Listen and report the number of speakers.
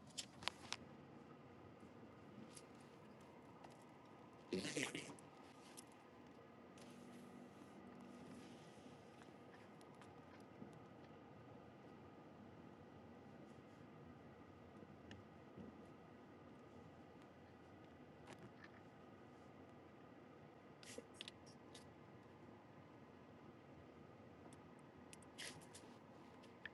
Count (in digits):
0